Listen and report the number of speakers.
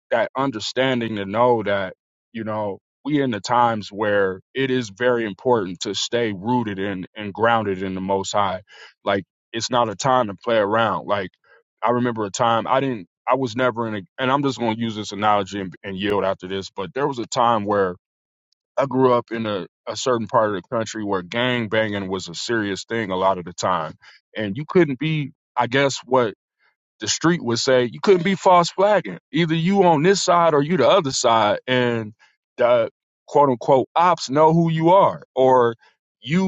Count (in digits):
1